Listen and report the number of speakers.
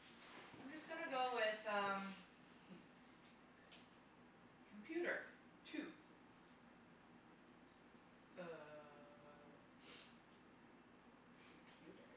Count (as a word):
two